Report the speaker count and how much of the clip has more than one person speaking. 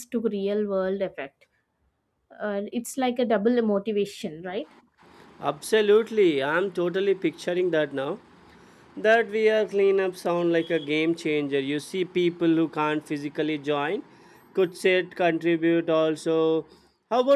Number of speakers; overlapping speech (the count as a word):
two, no overlap